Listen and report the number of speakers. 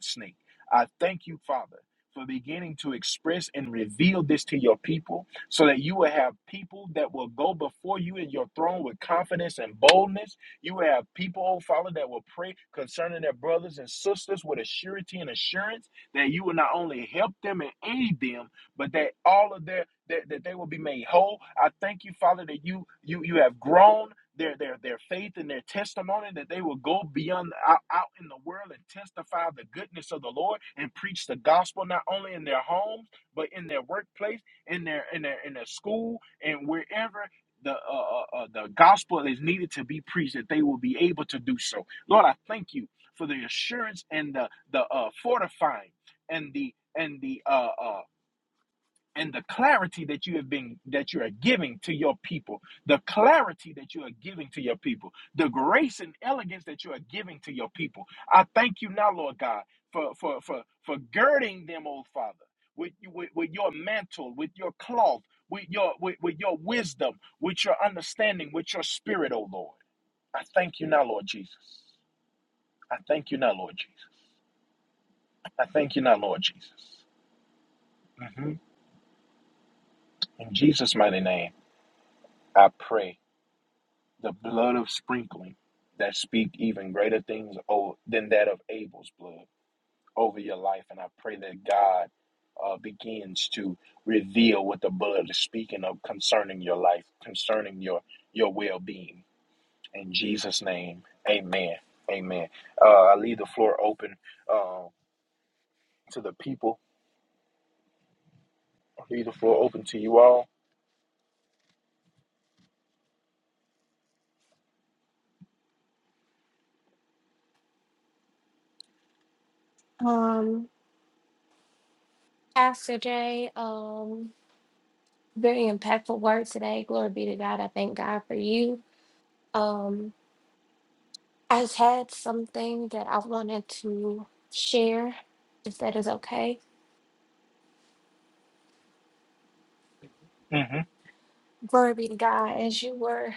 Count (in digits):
2